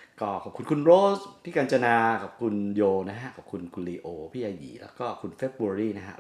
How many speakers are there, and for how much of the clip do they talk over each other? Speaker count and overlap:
1, no overlap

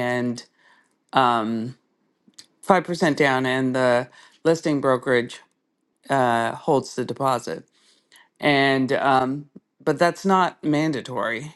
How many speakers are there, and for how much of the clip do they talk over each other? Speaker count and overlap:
1, no overlap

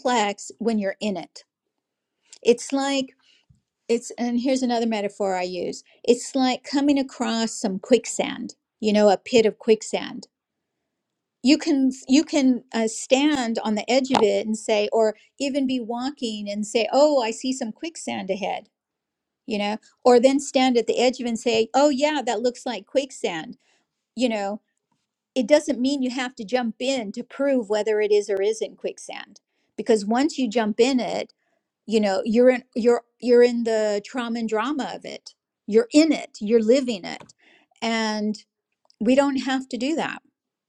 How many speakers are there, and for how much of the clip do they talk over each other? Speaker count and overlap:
1, no overlap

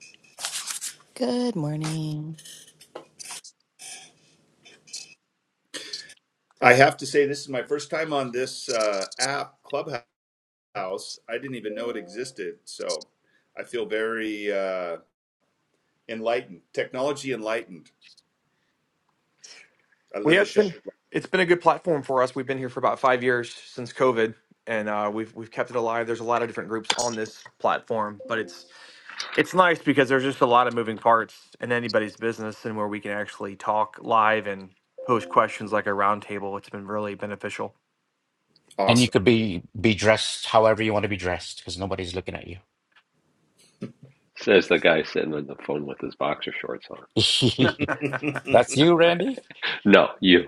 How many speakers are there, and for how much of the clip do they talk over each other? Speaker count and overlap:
5, about 1%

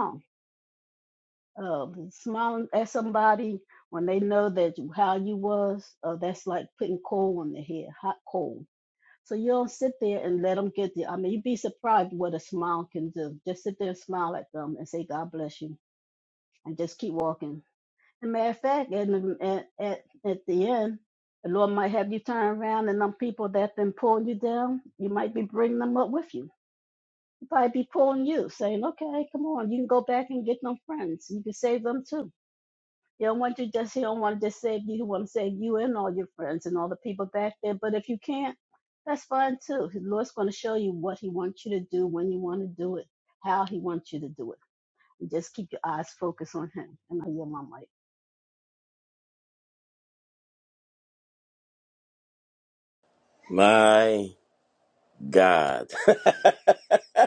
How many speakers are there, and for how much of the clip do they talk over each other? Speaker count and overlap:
2, no overlap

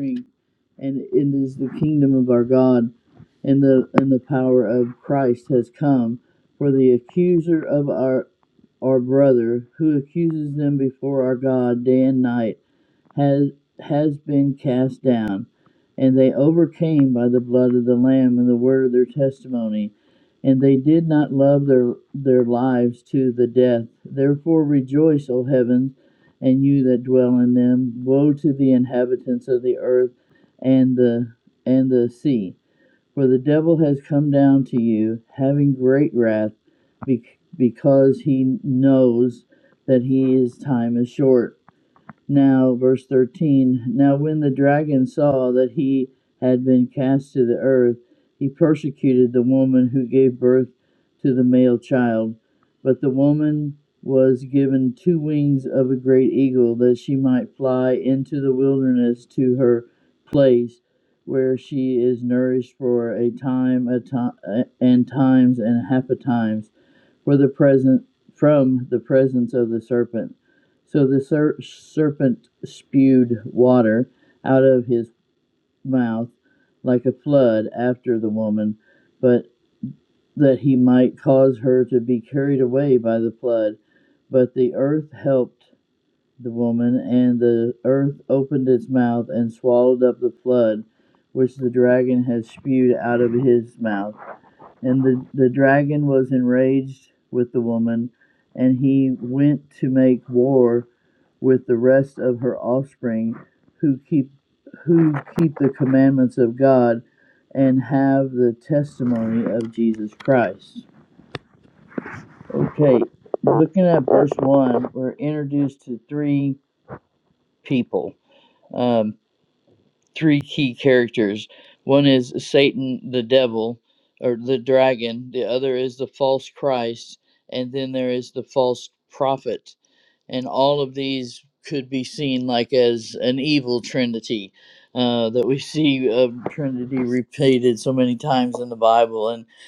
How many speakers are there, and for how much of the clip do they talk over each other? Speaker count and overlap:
1, no overlap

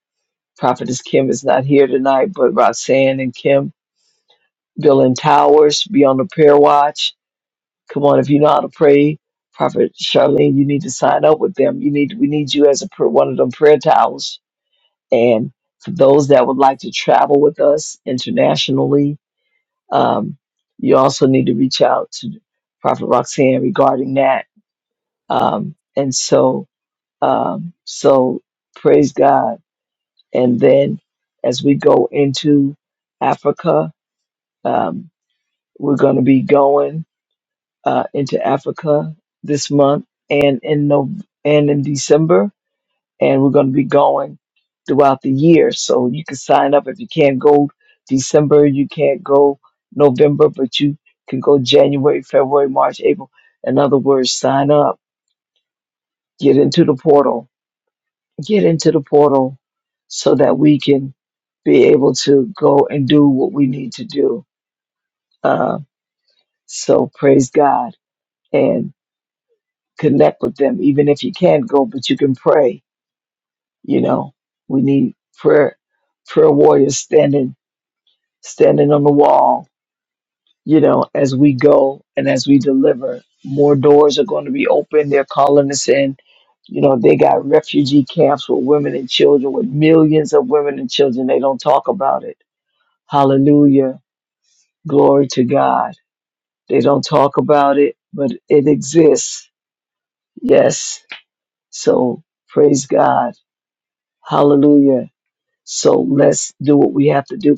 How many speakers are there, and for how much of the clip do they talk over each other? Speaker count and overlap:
1, no overlap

